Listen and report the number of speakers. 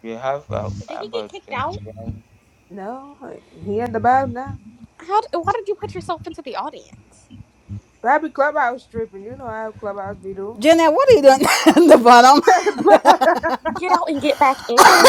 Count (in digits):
4